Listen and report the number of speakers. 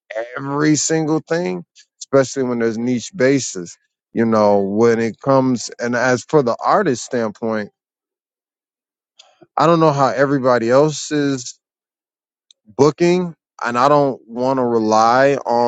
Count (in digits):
1